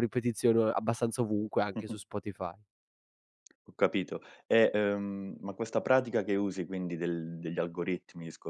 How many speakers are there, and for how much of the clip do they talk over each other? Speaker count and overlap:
2, about 2%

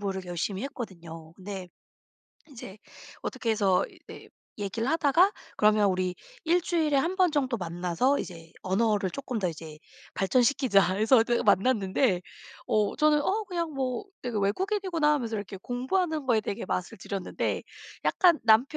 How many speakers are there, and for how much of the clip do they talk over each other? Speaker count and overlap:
1, no overlap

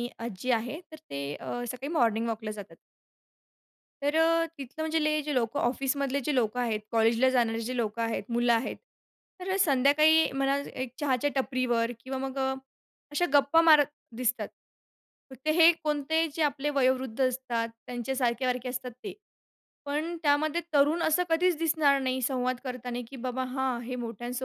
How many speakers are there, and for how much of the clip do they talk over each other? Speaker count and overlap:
1, no overlap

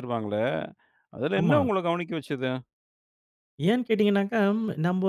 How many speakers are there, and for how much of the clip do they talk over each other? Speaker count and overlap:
2, about 6%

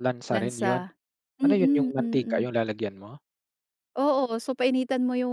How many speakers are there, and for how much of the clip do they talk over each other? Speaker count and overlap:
2, about 29%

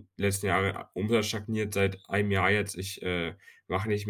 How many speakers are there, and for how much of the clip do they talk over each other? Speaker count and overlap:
1, no overlap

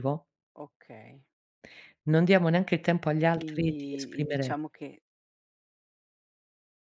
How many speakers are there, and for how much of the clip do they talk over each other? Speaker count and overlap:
2, about 17%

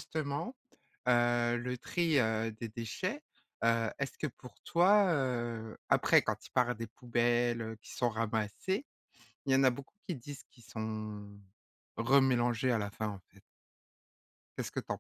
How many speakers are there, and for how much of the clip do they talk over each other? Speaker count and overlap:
1, no overlap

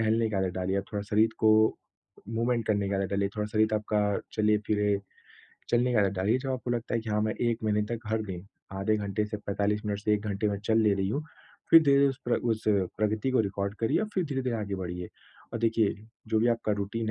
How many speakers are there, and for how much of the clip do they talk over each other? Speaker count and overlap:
1, no overlap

